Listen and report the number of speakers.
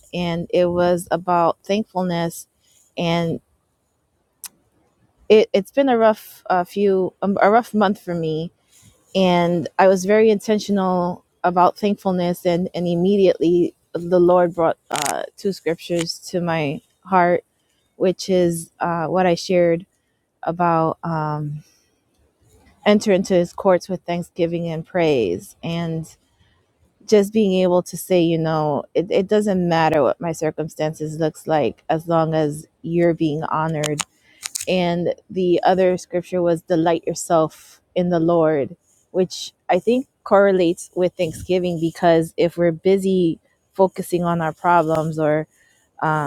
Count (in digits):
1